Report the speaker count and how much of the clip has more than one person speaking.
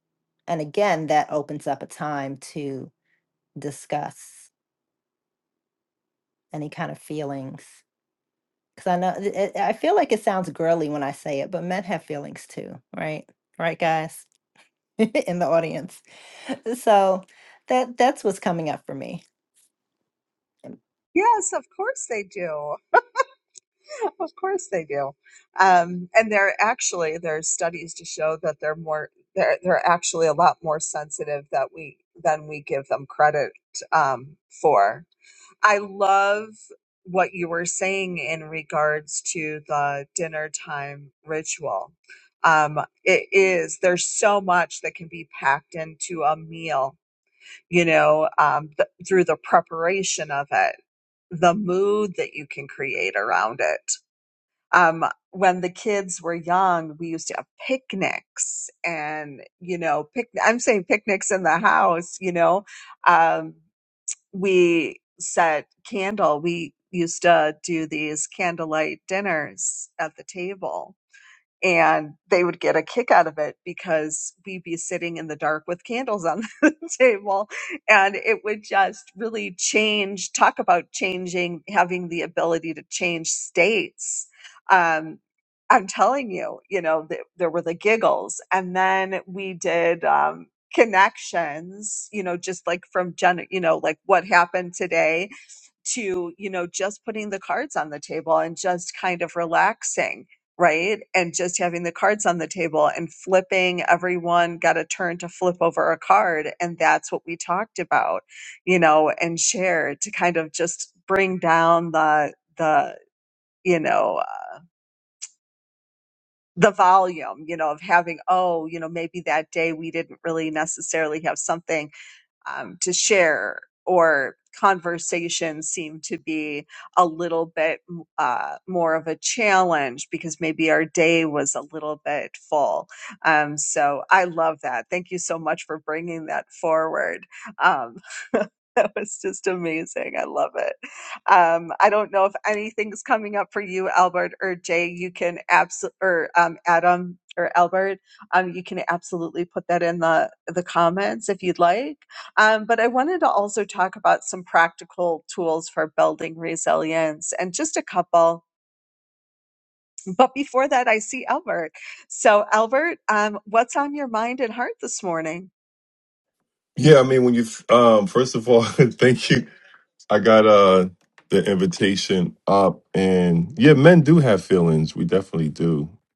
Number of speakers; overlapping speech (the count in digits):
3, no overlap